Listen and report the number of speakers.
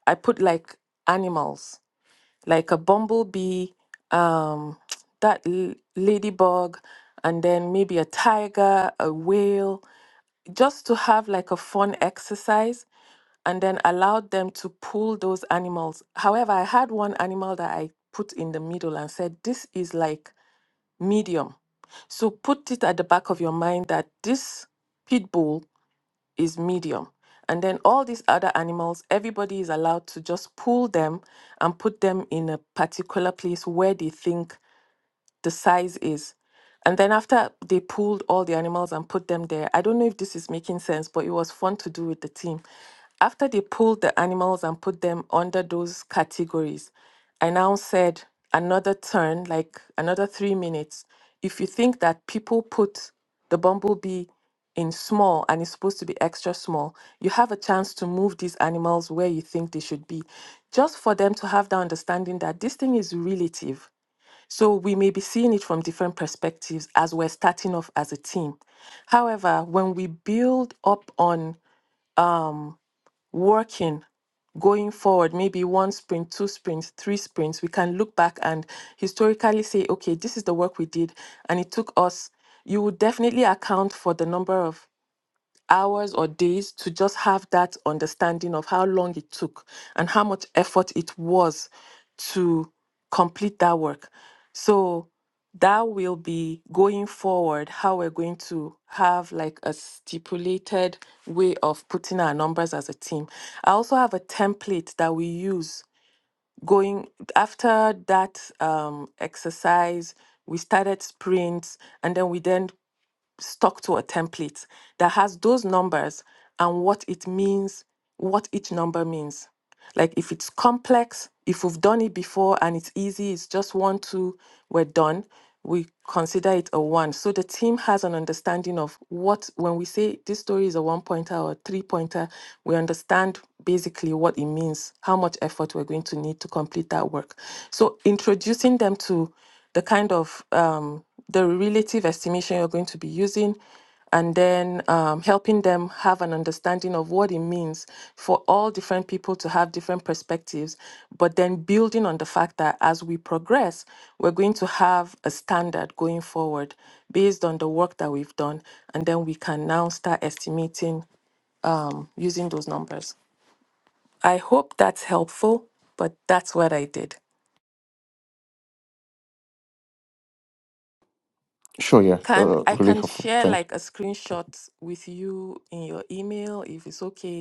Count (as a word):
two